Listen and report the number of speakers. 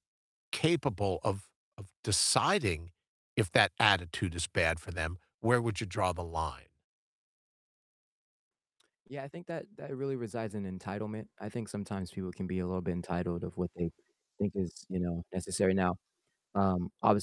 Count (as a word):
two